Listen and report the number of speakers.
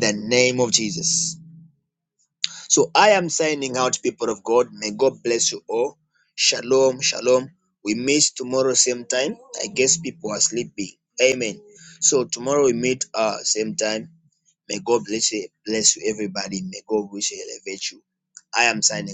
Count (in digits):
1